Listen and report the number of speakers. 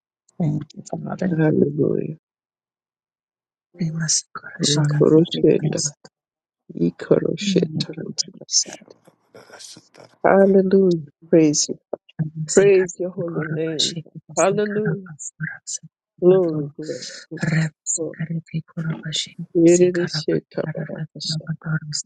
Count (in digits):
3